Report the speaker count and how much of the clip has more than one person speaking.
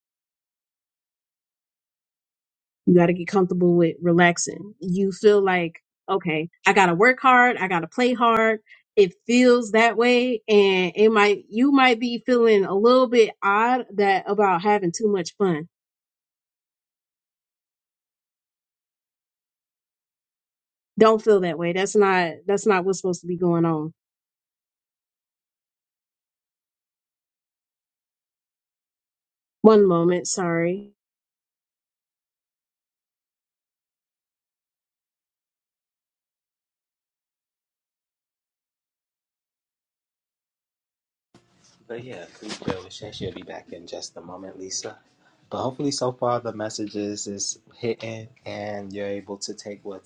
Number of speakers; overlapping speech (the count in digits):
2, no overlap